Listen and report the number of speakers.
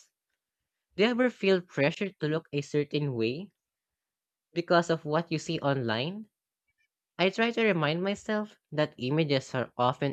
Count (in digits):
1